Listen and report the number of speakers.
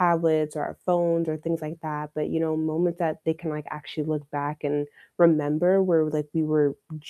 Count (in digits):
1